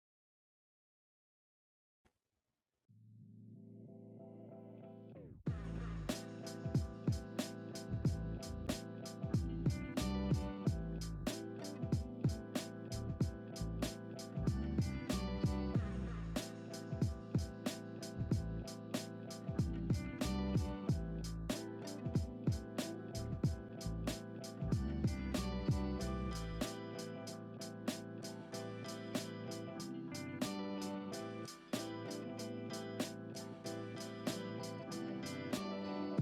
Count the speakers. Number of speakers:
zero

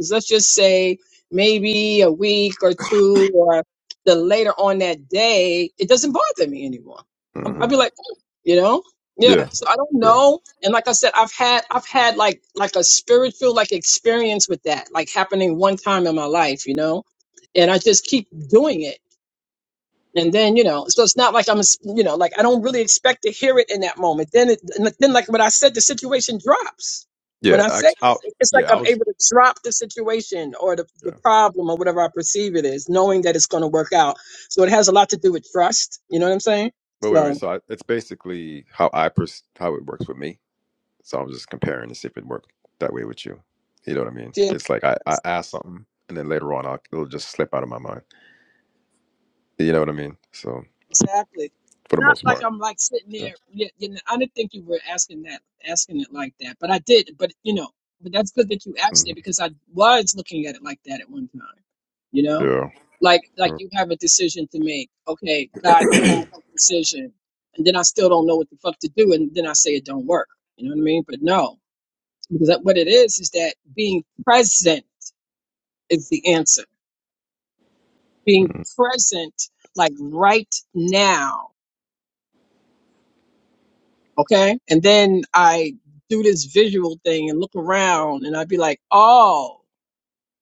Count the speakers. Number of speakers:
two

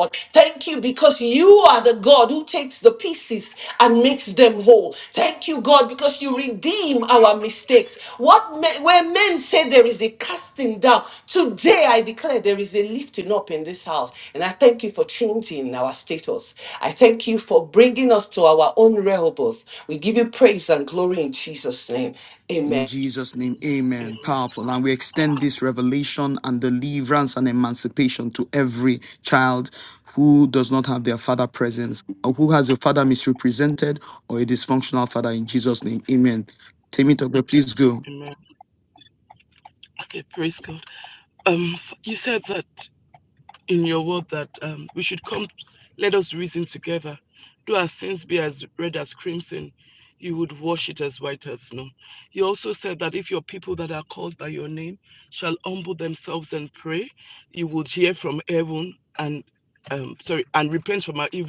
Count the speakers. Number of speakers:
three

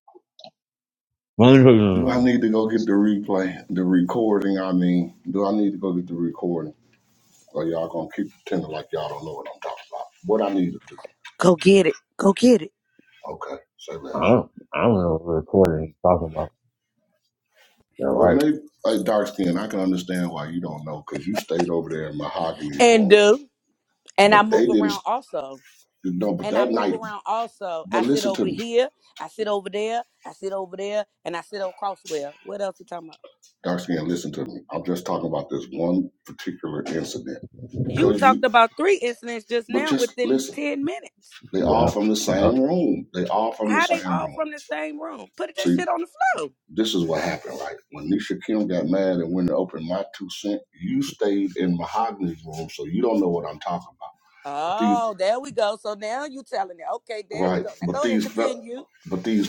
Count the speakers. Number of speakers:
three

